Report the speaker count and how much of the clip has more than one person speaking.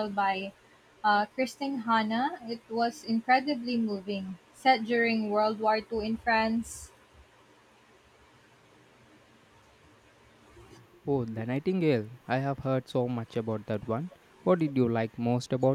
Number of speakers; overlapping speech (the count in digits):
2, no overlap